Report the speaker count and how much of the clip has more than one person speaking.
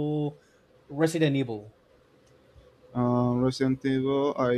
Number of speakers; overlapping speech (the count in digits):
2, no overlap